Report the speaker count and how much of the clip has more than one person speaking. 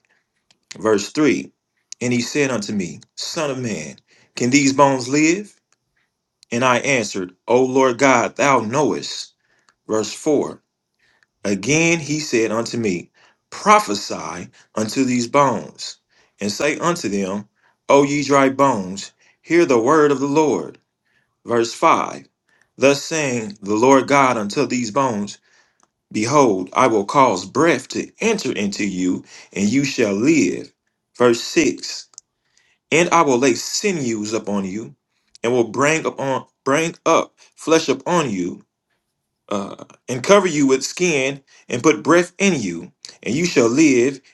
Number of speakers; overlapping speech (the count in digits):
1, no overlap